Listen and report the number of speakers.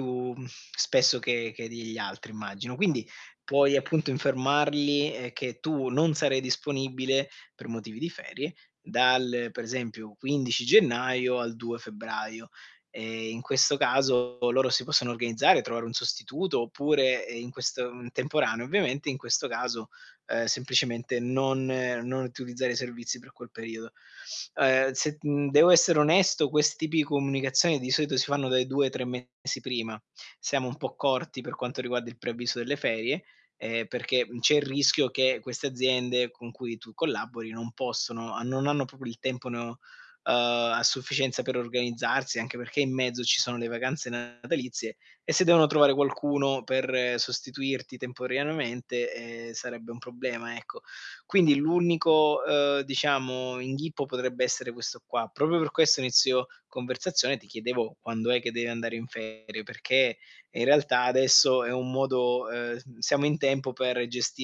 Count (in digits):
1